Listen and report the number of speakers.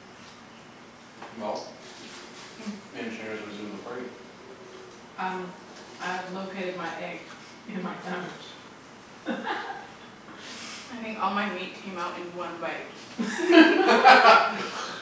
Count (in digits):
3